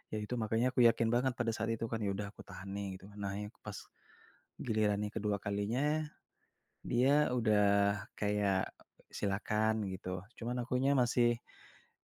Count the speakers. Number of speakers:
one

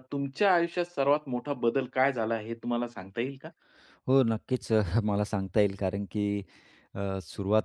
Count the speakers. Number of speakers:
two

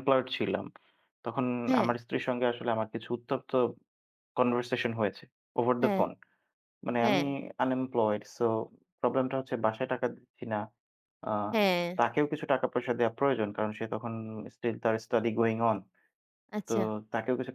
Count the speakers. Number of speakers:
two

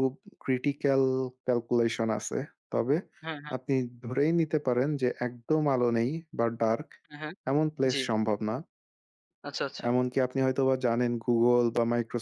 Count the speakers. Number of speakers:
two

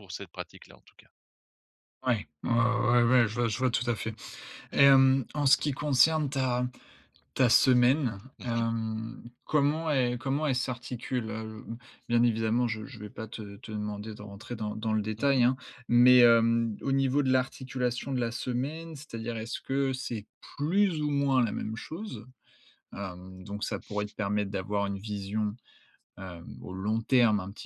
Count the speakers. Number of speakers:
two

